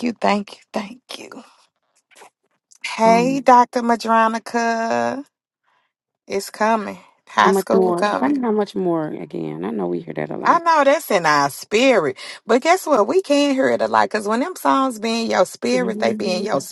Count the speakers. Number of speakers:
2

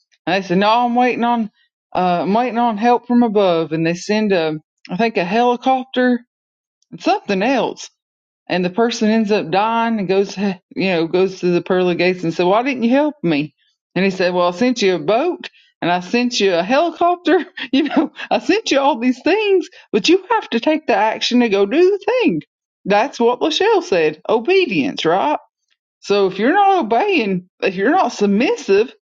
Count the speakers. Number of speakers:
1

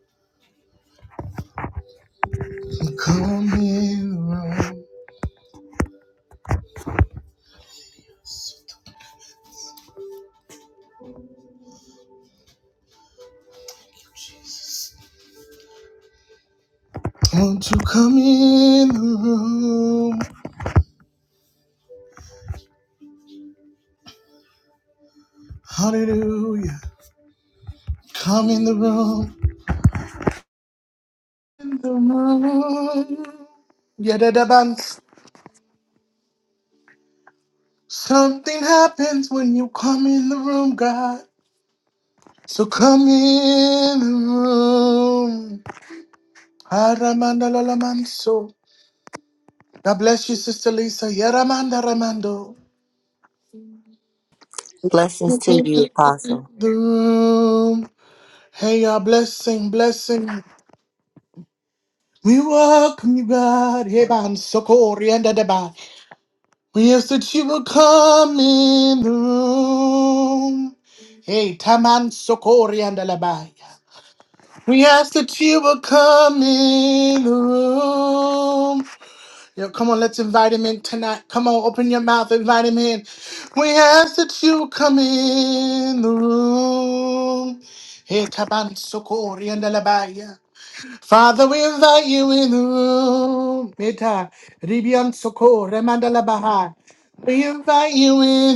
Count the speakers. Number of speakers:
2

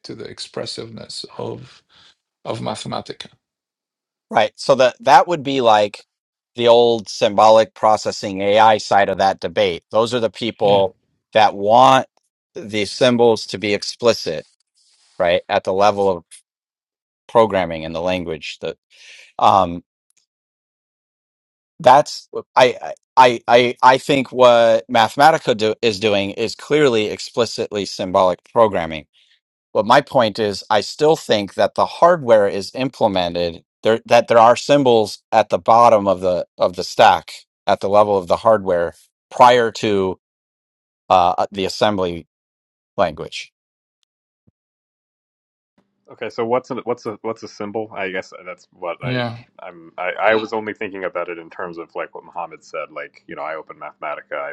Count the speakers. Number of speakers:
3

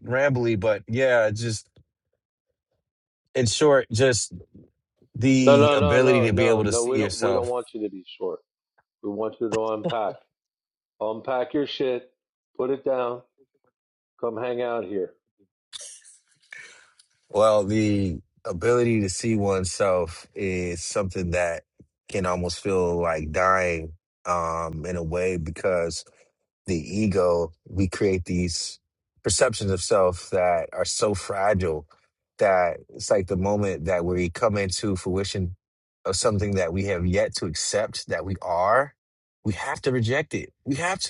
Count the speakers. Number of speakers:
2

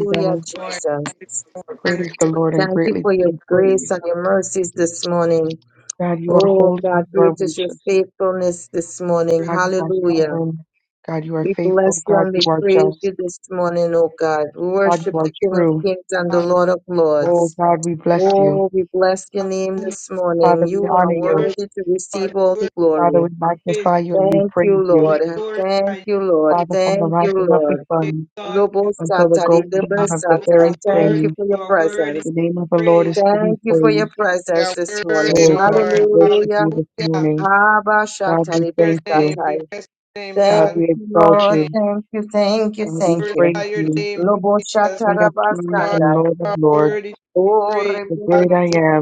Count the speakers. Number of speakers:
3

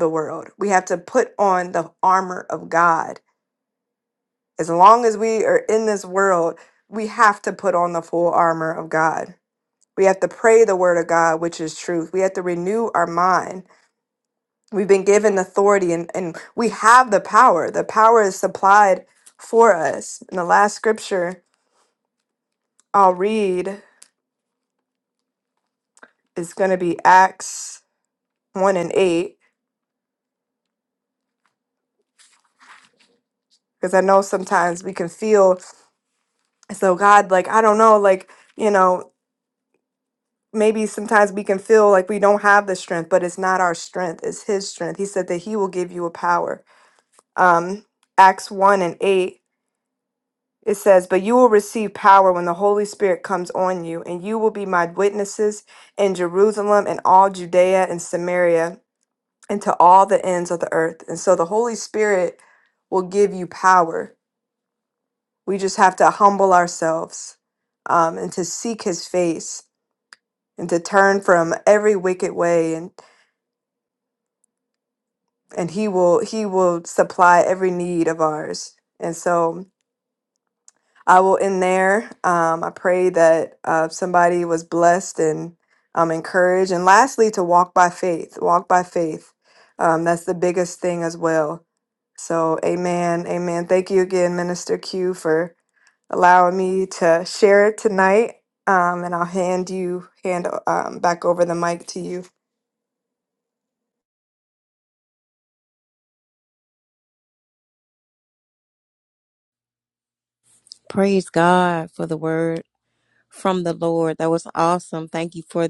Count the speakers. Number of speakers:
2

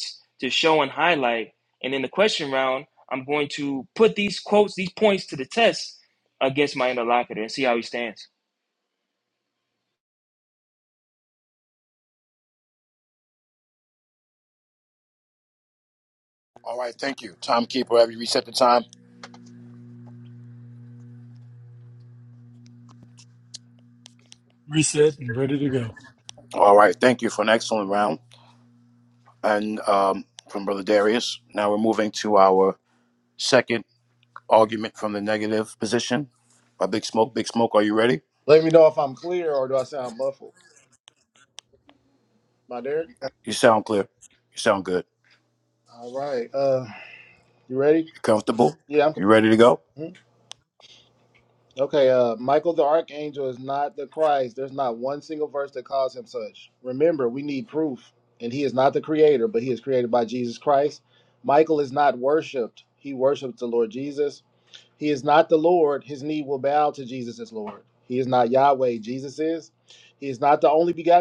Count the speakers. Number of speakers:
4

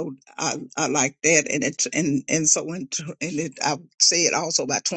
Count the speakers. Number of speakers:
1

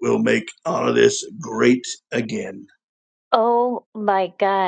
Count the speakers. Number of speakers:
2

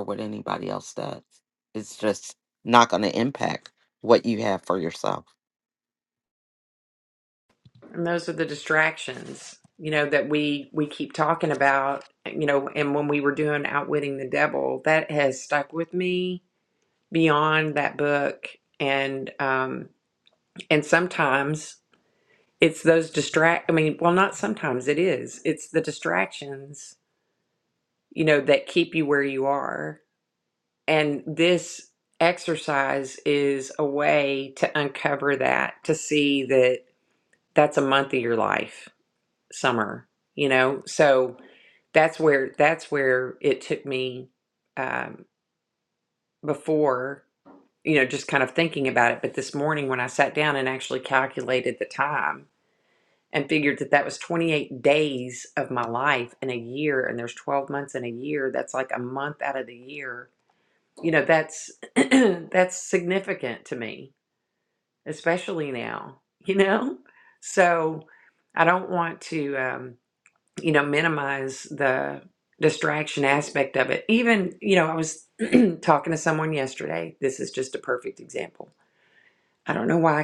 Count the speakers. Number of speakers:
2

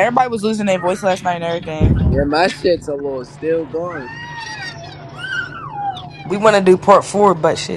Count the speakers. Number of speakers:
3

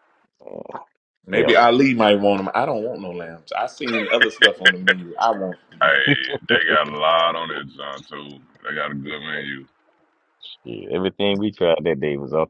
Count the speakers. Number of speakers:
3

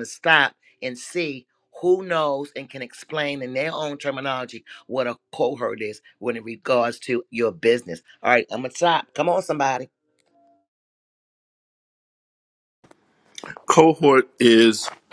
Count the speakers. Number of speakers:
2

